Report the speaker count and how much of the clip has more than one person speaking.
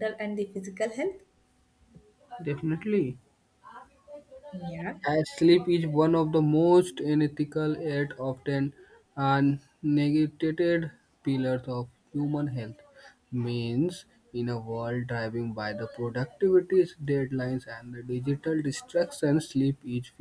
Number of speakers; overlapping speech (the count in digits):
2, no overlap